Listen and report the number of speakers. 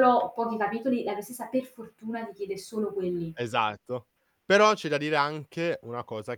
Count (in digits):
2